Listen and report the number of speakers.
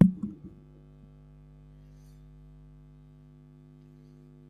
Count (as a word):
zero